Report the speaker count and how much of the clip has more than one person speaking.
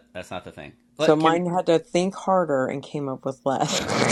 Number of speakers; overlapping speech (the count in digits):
2, about 9%